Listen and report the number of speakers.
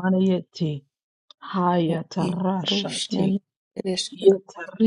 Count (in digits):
2